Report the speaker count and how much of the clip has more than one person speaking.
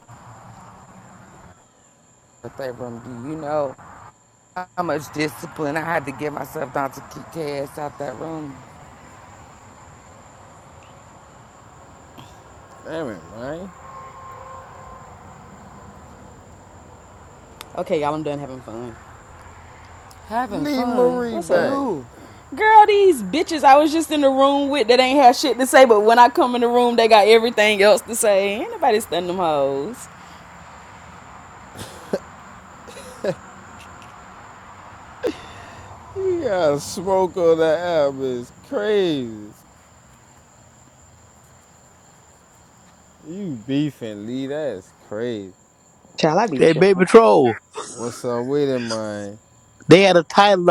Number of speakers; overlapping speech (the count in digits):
4, about 3%